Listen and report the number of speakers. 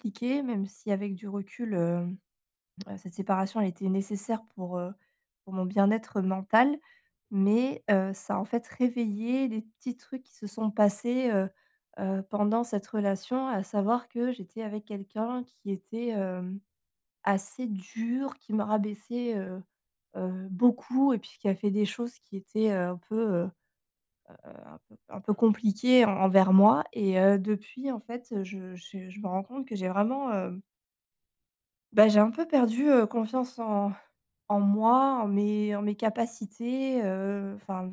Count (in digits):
1